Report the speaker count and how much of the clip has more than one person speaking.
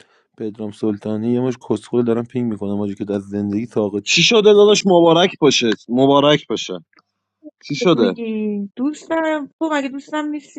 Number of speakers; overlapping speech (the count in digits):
3, about 4%